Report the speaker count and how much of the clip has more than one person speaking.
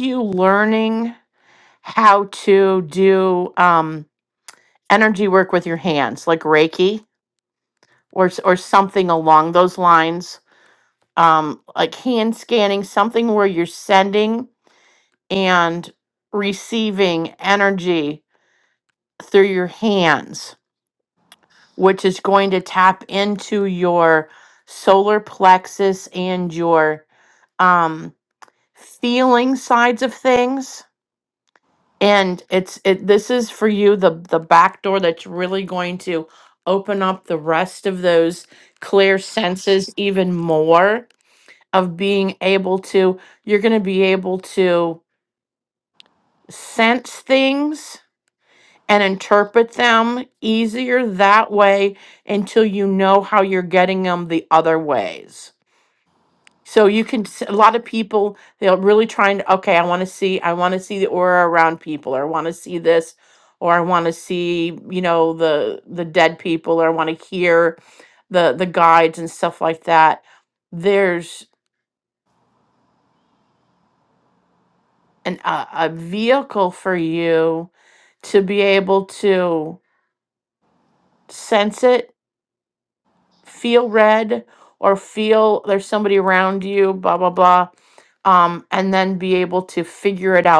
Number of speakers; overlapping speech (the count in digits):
1, no overlap